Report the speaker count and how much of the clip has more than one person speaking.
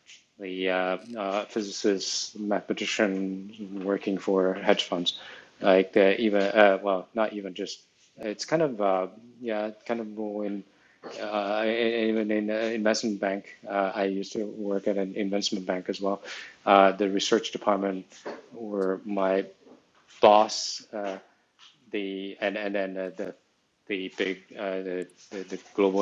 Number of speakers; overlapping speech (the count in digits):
1, no overlap